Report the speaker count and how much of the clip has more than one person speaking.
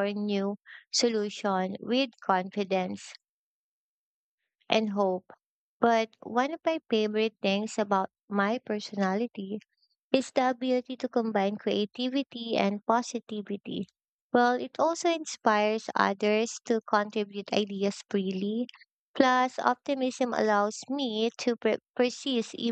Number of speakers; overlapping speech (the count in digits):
1, no overlap